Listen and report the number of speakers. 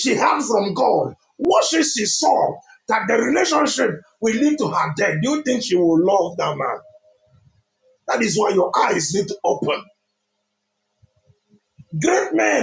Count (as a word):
one